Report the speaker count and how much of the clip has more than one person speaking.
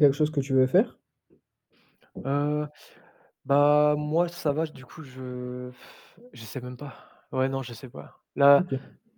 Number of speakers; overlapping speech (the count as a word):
two, about 1%